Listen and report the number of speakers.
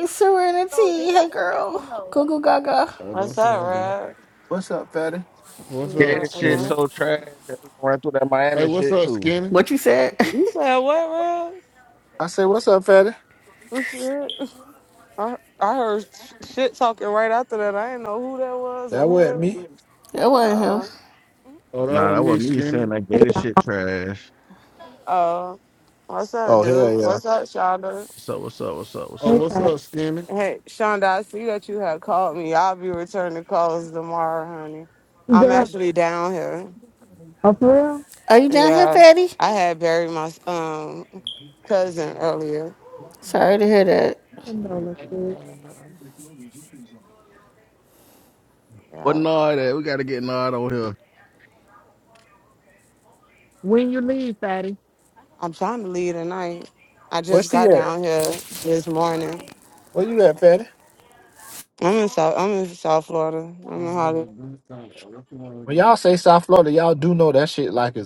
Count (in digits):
6